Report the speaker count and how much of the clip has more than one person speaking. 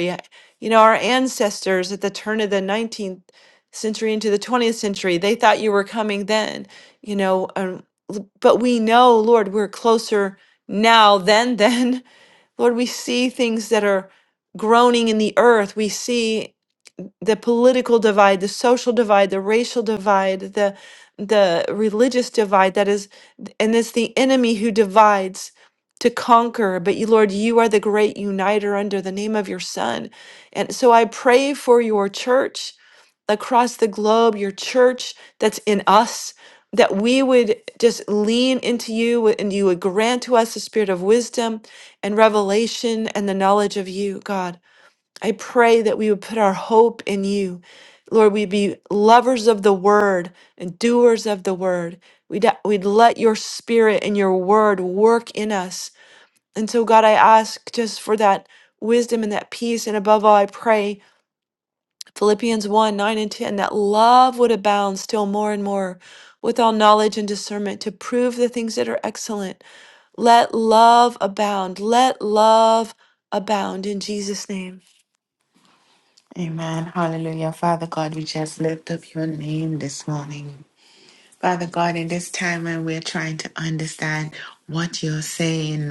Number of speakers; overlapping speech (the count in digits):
2, no overlap